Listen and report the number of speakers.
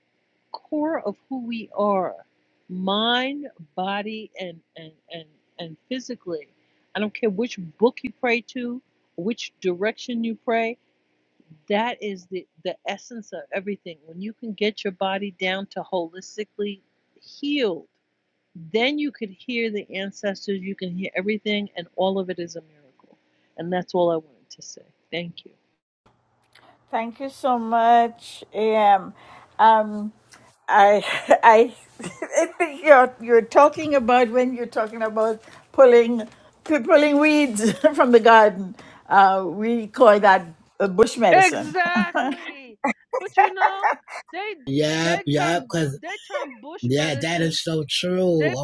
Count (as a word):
three